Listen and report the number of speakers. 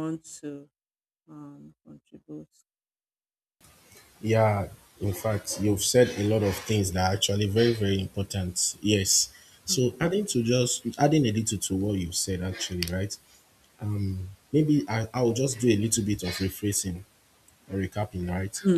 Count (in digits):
2